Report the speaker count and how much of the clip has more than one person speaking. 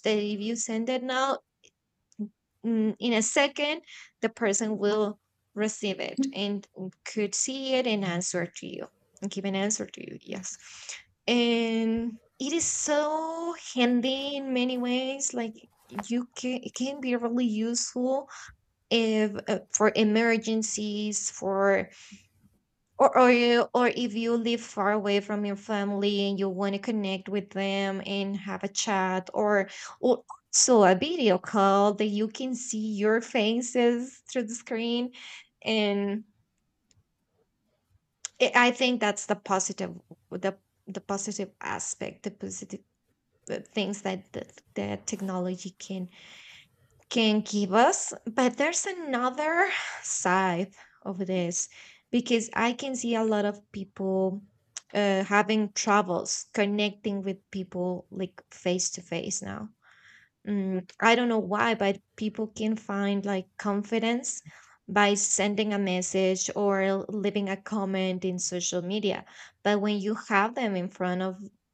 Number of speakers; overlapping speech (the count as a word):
one, no overlap